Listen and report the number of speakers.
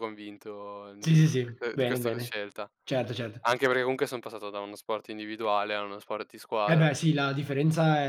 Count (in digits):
2